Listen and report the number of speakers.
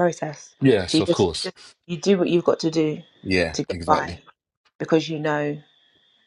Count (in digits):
2